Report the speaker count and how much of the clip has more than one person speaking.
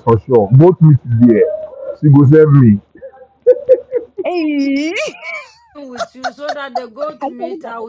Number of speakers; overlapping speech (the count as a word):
three, about 8%